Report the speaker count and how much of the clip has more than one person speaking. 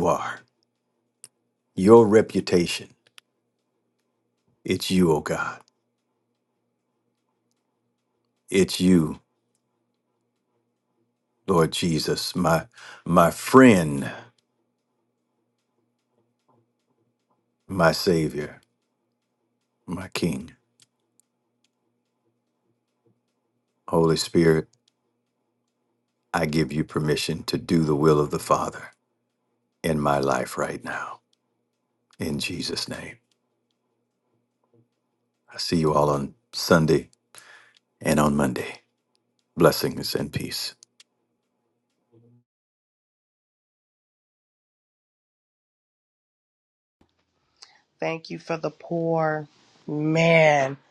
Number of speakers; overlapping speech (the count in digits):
2, no overlap